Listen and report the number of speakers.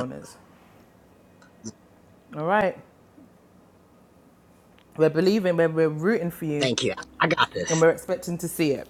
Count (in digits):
2